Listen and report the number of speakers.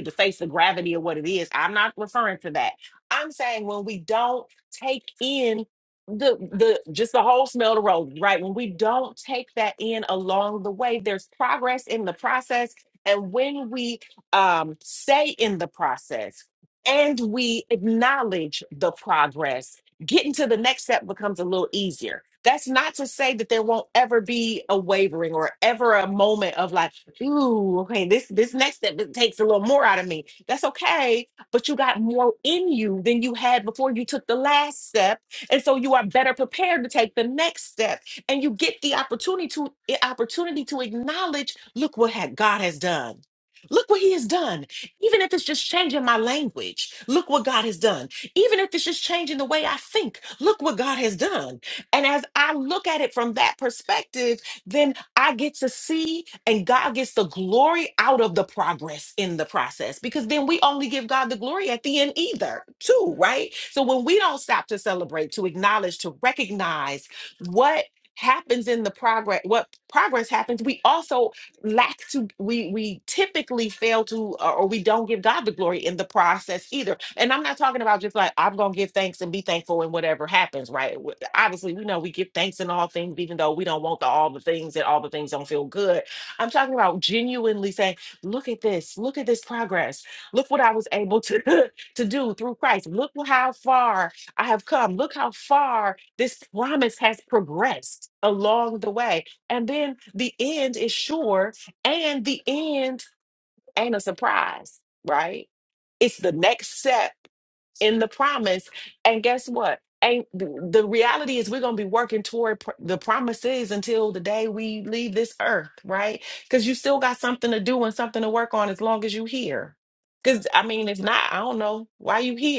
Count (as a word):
one